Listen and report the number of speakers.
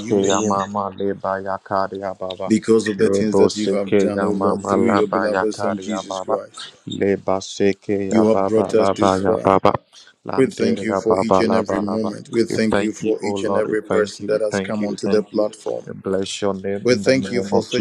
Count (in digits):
2